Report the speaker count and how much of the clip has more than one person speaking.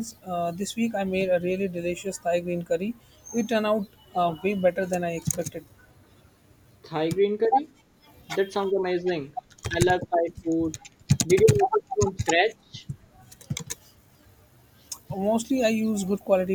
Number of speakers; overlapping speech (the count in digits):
2, no overlap